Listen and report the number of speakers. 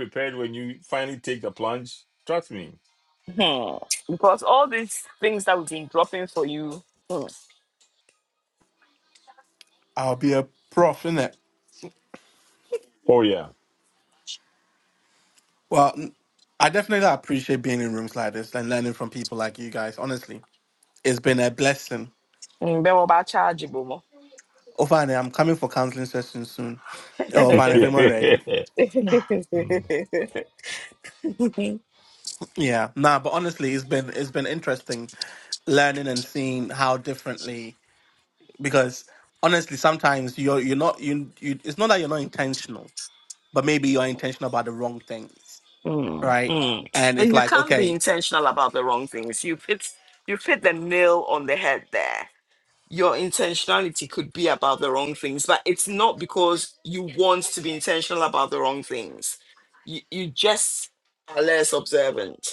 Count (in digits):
3